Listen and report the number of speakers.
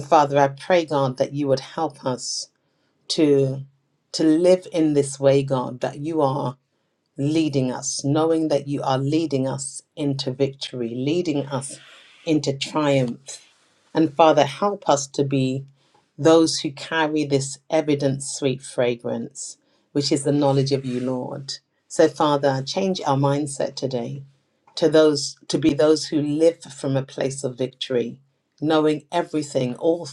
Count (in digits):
1